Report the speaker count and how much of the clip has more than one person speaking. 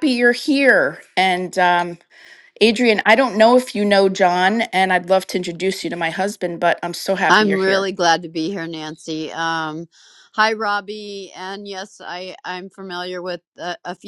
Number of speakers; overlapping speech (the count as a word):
two, about 4%